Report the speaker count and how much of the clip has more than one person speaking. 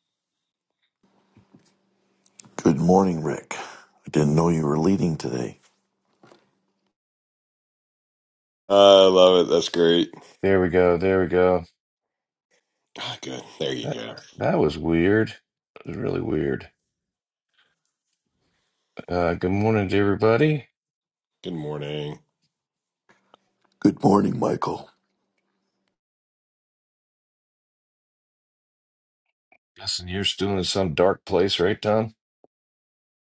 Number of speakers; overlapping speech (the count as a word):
three, under 1%